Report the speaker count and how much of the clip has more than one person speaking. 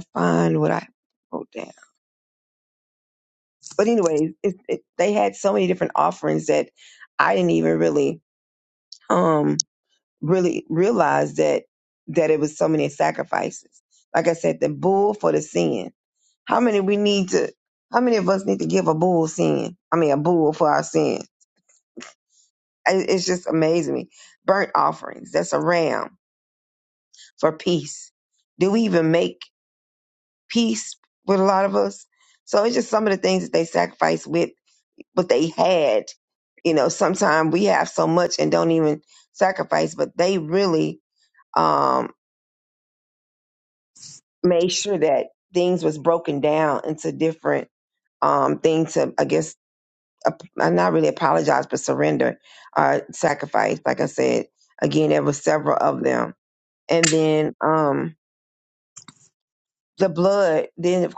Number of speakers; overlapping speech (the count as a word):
one, no overlap